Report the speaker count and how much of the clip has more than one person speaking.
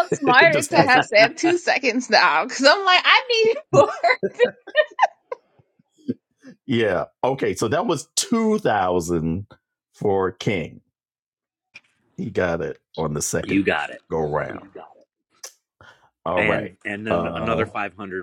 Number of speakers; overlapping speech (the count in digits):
3, about 11%